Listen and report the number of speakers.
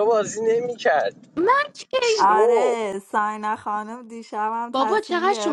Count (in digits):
3